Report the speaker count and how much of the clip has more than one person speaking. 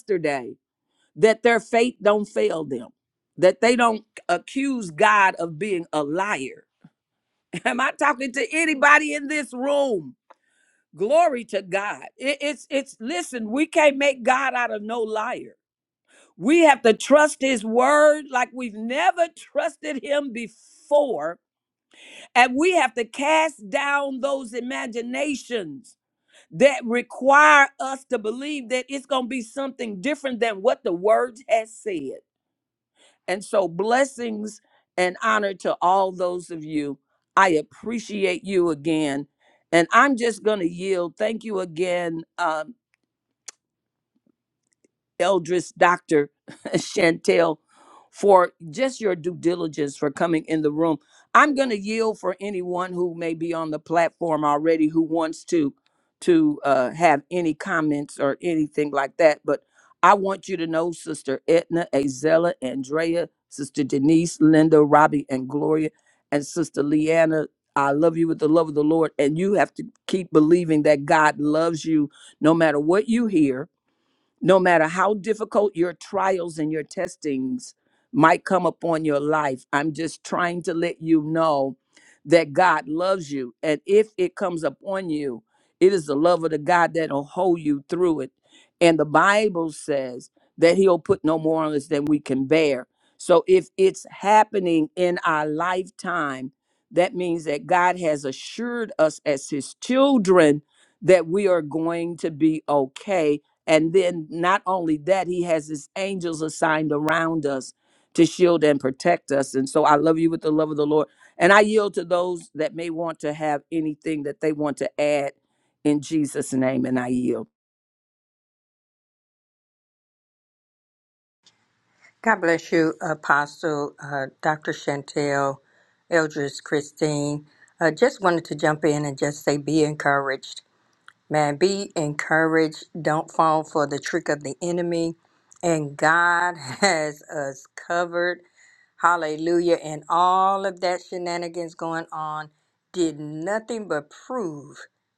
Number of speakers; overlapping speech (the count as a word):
two, no overlap